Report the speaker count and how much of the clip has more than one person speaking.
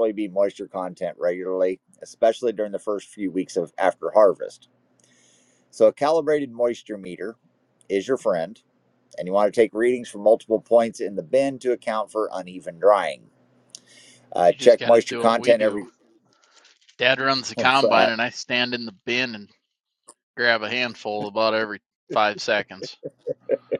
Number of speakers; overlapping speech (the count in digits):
2, about 8%